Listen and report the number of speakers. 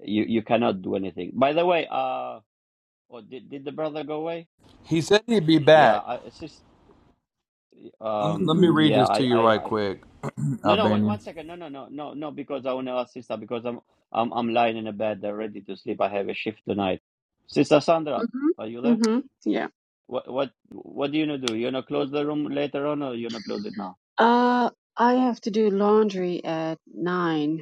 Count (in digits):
3